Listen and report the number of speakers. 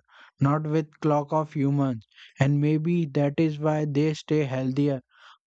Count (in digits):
1